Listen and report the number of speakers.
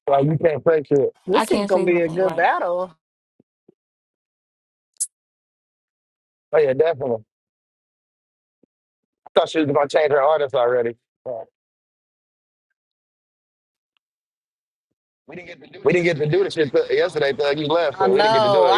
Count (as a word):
two